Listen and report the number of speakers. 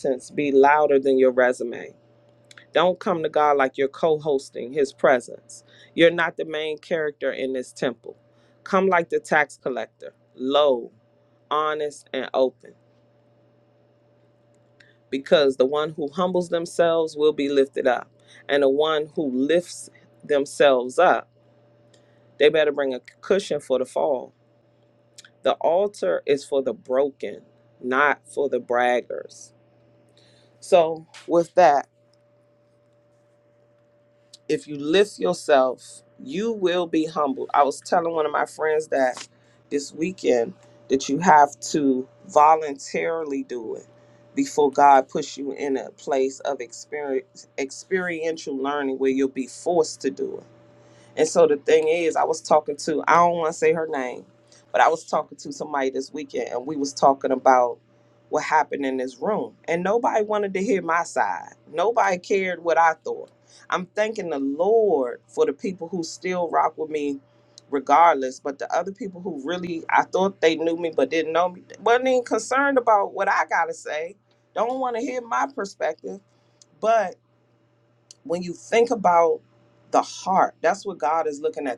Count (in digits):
1